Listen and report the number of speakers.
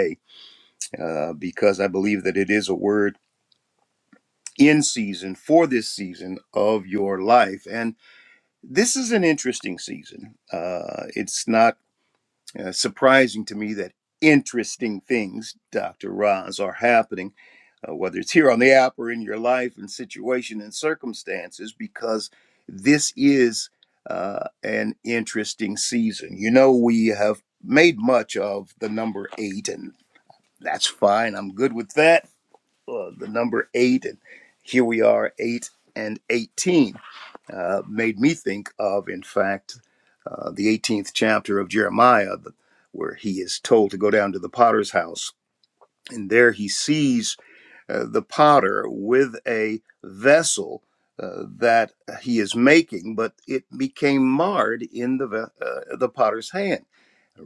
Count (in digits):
1